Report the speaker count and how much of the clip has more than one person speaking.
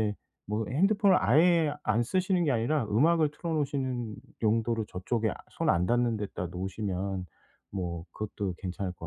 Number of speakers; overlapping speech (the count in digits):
1, no overlap